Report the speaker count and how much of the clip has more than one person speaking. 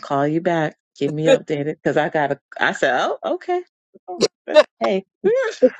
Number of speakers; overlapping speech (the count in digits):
1, no overlap